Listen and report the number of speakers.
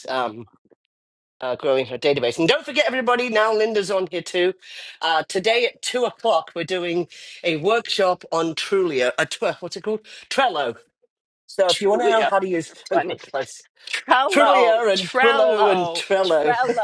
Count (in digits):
2